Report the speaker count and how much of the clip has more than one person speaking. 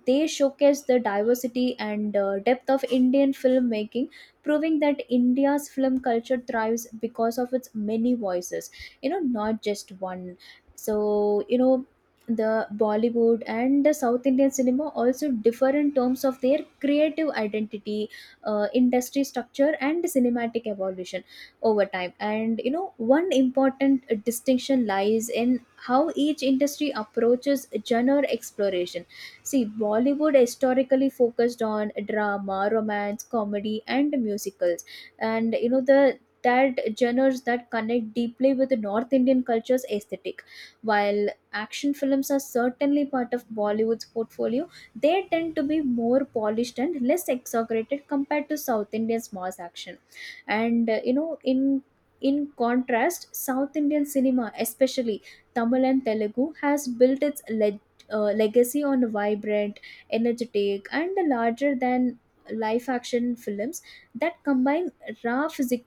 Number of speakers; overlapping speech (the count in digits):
1, no overlap